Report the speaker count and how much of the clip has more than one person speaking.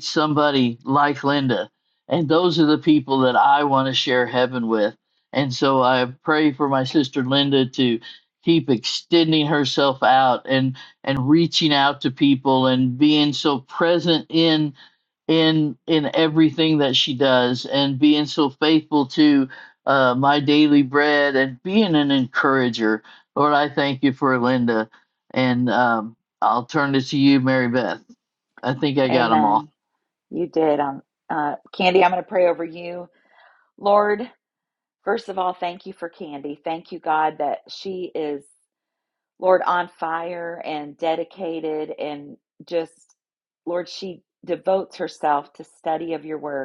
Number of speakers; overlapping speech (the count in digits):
2, about 1%